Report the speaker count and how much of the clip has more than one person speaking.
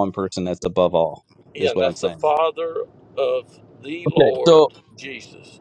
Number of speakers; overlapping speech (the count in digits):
2, about 20%